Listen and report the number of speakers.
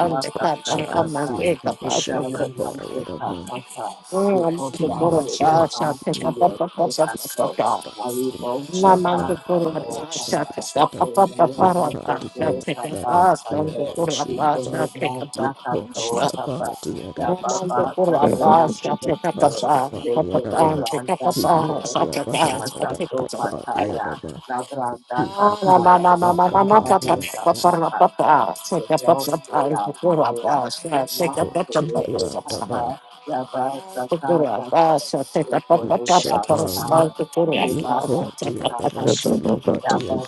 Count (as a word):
three